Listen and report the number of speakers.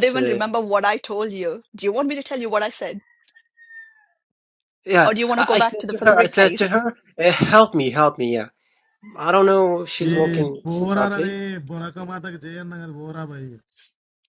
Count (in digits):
3